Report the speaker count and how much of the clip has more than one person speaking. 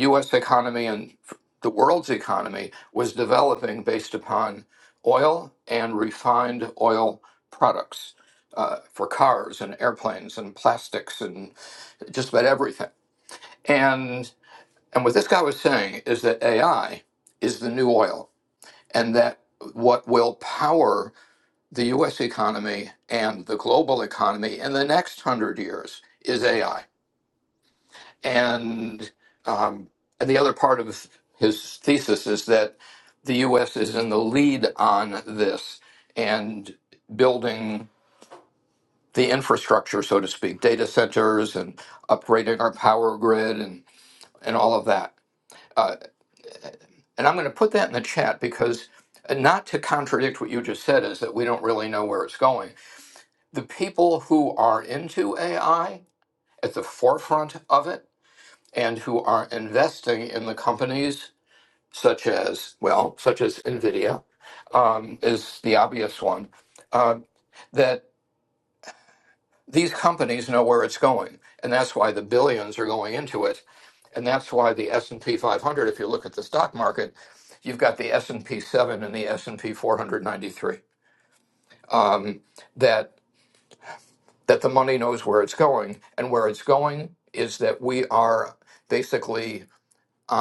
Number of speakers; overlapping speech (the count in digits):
1, no overlap